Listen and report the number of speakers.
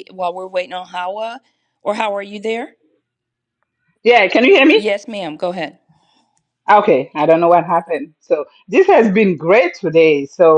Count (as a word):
two